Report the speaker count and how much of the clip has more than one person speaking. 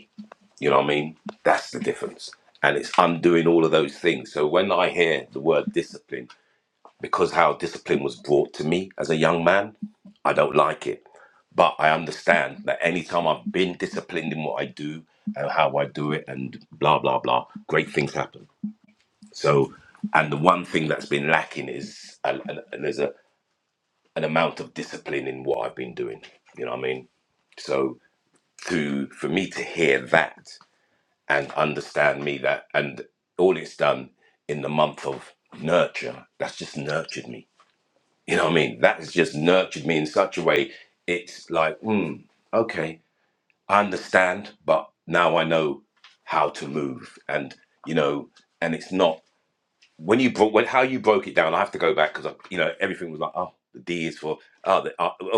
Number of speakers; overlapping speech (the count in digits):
1, no overlap